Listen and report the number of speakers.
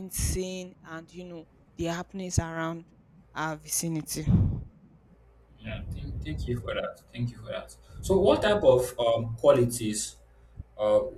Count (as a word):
two